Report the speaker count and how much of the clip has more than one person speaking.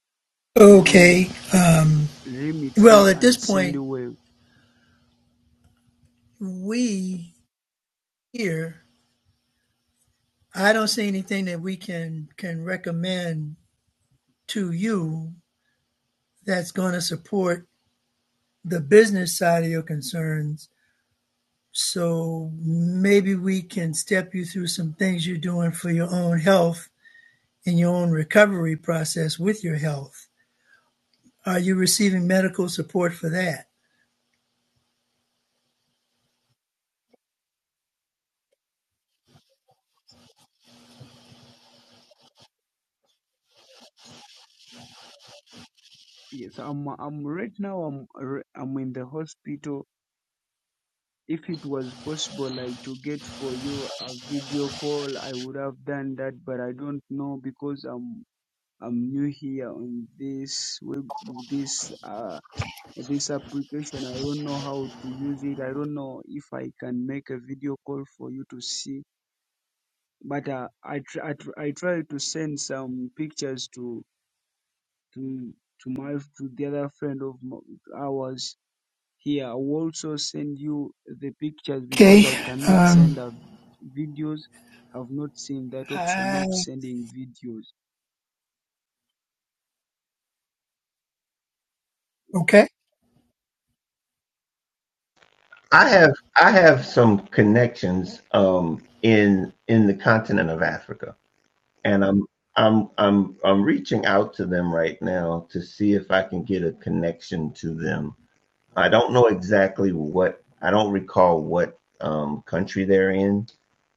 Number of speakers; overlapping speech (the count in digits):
3, about 3%